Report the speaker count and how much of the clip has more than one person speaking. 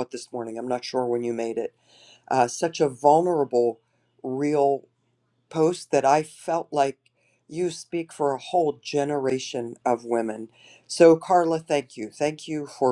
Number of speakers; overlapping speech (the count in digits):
1, no overlap